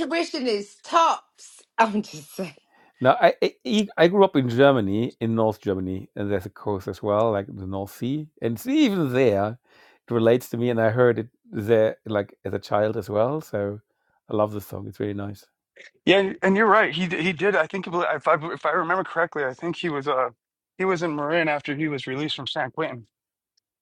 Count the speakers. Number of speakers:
3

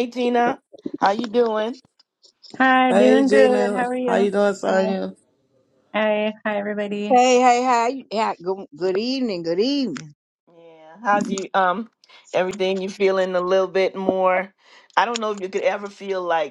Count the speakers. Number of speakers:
4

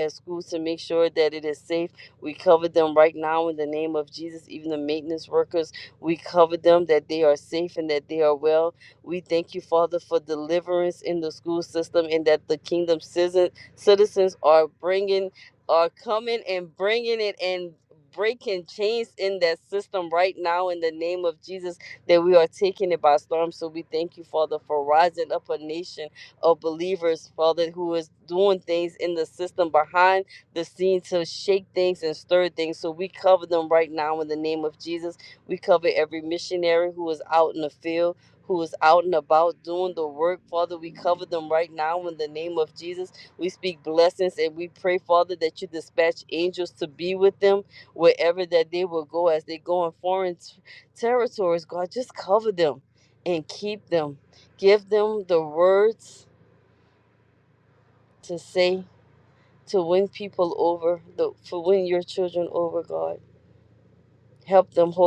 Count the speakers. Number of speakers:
1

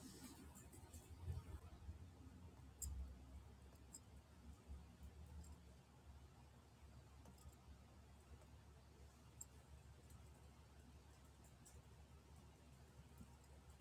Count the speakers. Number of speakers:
0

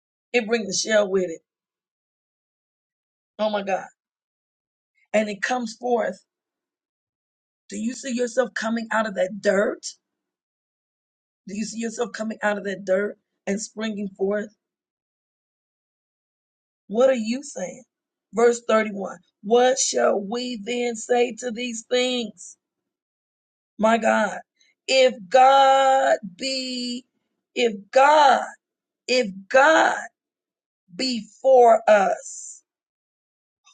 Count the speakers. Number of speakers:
1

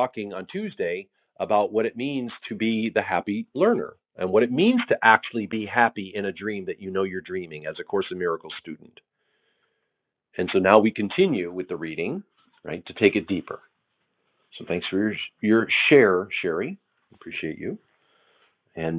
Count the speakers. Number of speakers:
1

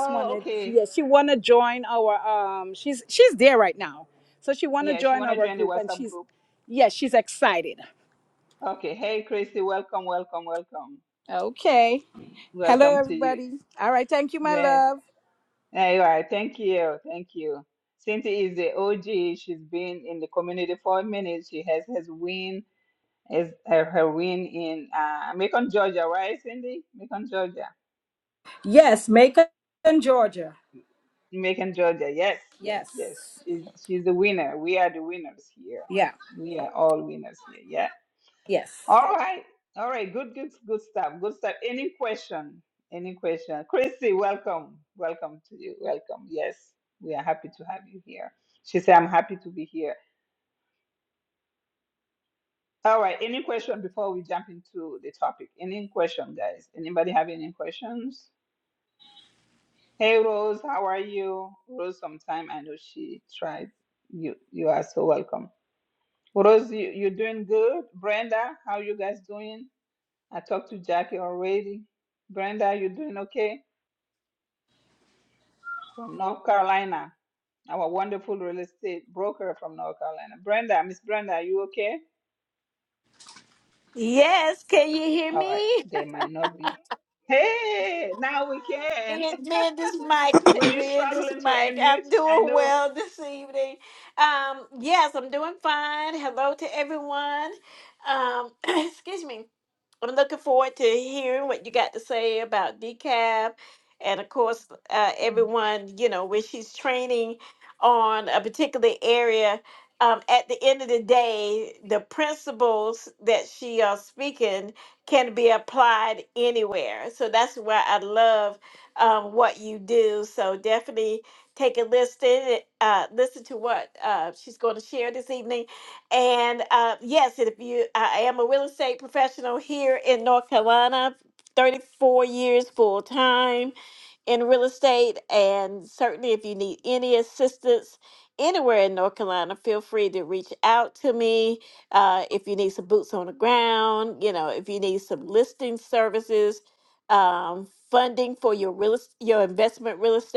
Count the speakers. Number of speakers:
3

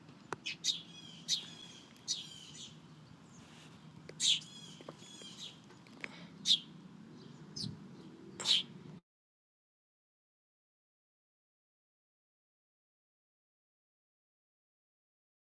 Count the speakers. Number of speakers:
0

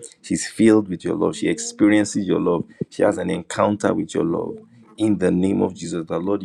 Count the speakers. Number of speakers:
1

